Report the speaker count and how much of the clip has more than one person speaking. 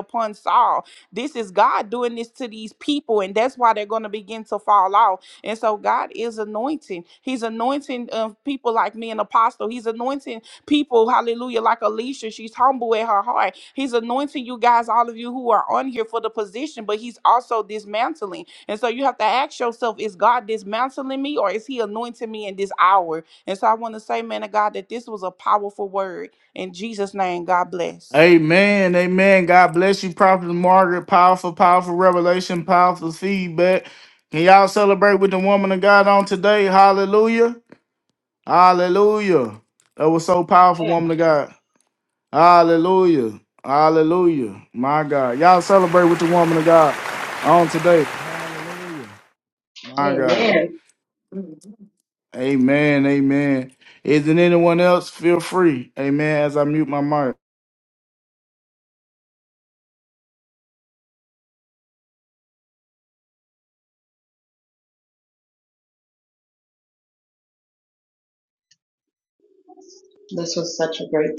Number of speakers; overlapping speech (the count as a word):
three, about 1%